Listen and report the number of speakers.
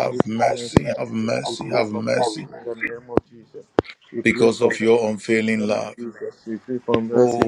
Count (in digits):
2